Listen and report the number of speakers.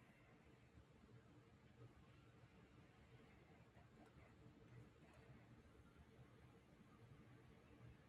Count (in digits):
0